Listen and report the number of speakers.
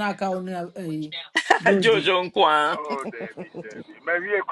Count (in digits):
3